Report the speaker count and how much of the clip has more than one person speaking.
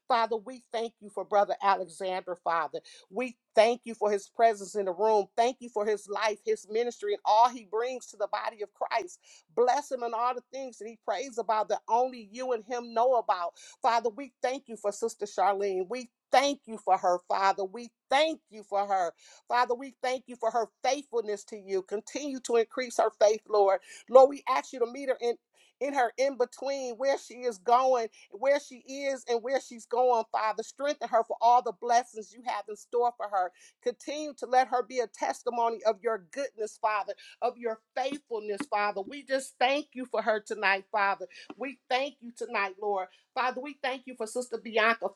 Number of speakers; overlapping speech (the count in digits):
1, no overlap